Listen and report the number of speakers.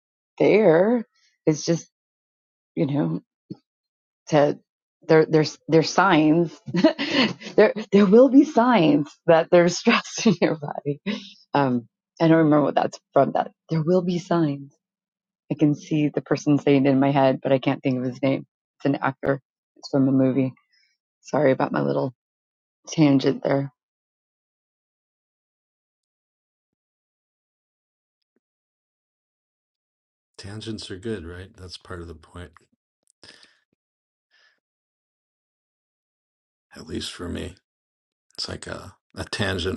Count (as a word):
two